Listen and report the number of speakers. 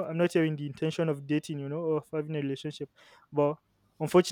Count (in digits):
1